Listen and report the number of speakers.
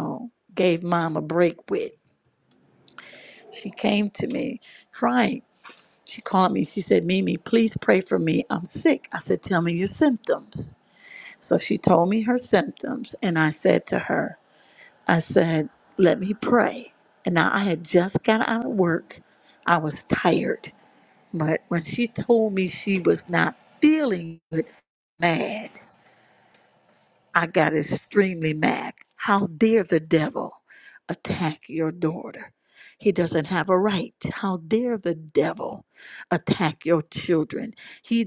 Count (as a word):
one